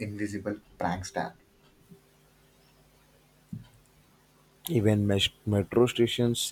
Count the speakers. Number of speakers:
two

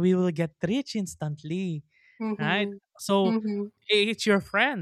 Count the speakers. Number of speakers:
two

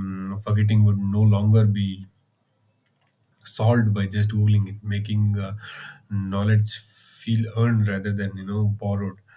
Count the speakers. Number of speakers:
one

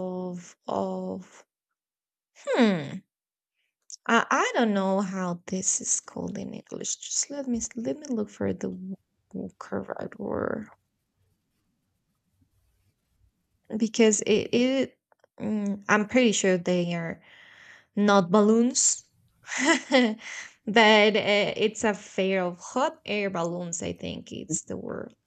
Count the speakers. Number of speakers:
one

